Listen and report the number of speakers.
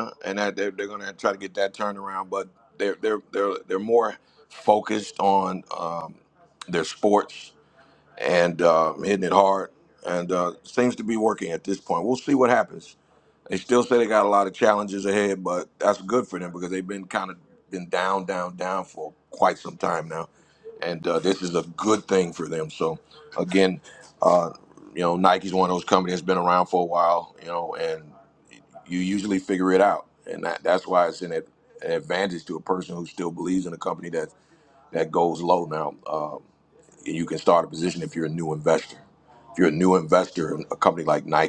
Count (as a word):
one